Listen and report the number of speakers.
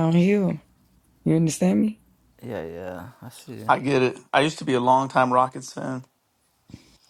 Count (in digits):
3